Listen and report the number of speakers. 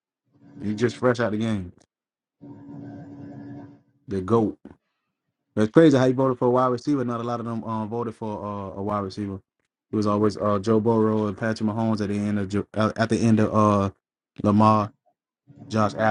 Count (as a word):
one